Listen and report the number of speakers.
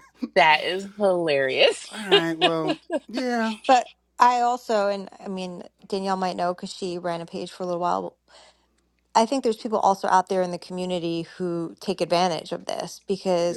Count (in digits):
3